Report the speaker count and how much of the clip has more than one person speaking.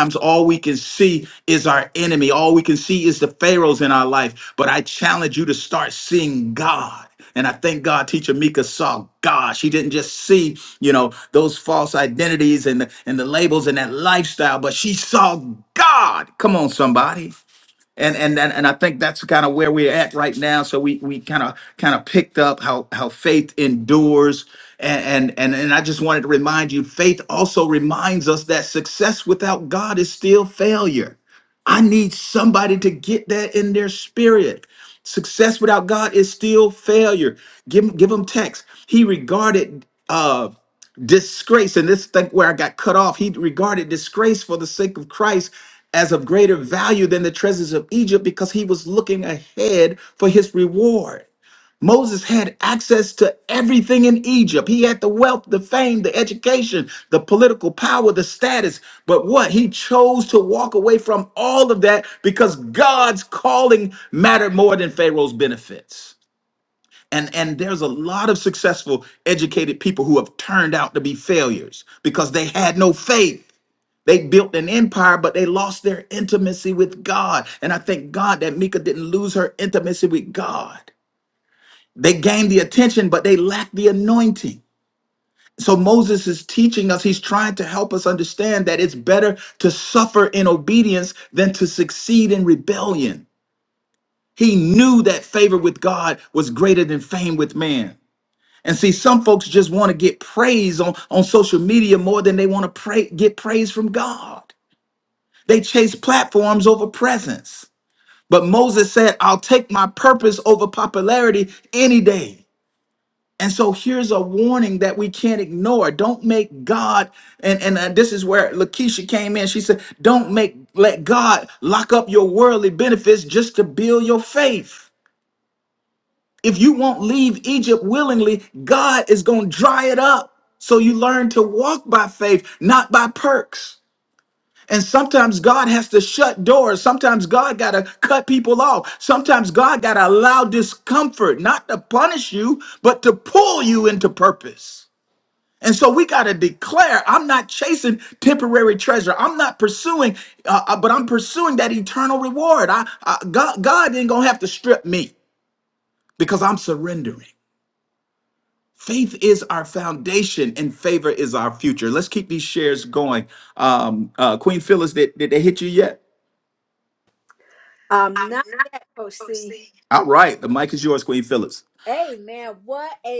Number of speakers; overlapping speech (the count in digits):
2, no overlap